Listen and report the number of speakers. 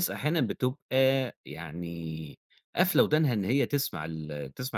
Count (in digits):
1